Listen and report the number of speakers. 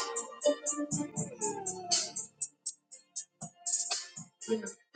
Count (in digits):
0